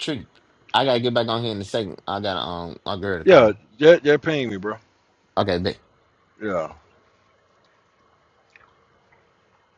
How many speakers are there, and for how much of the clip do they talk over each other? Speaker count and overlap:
2, about 2%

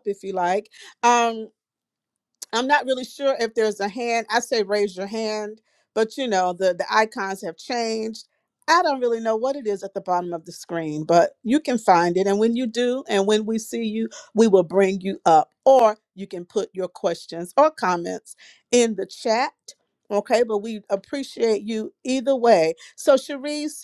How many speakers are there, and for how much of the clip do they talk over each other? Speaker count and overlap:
1, no overlap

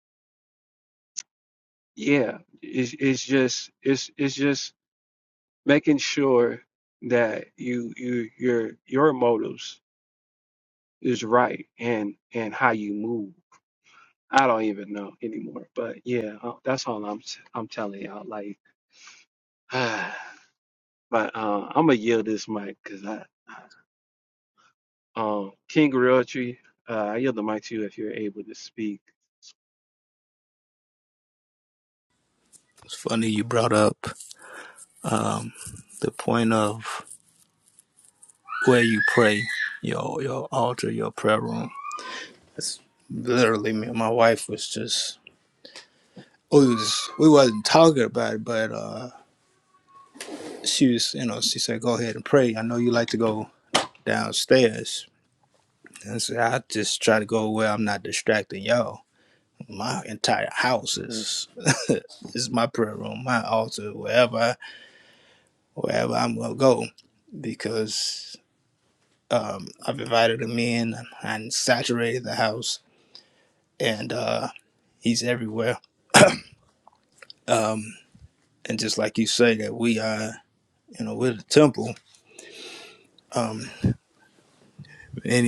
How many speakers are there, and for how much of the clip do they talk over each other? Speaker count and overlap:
2, no overlap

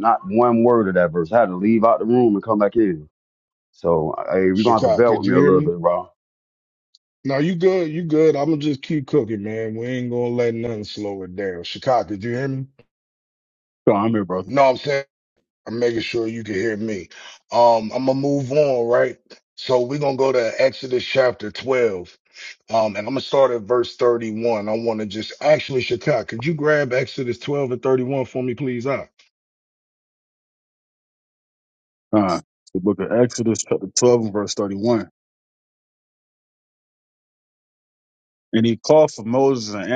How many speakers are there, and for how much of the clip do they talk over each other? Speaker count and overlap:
3, about 3%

